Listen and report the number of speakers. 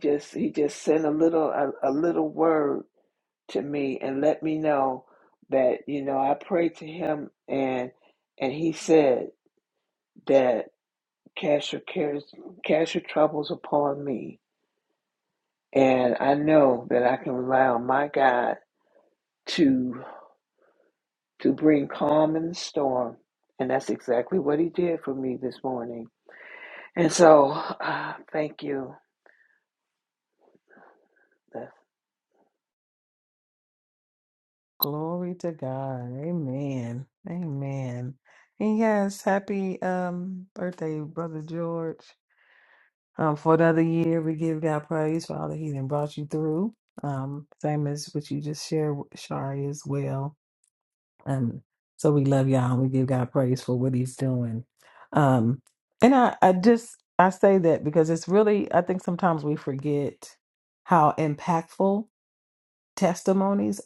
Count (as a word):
two